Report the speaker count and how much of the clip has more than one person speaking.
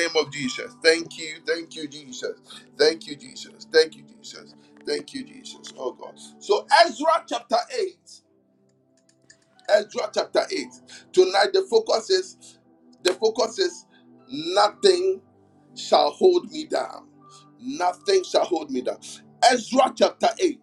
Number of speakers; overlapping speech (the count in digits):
1, no overlap